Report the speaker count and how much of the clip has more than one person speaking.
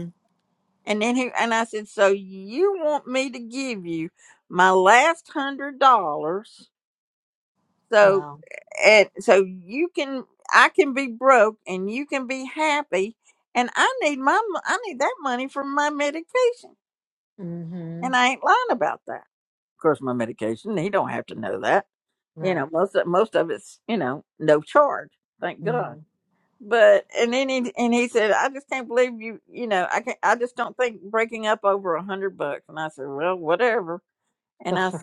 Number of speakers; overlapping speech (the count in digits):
2, about 2%